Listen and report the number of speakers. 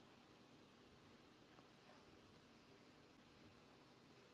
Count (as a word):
zero